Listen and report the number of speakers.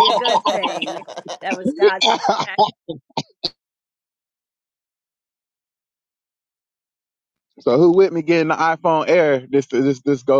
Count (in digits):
2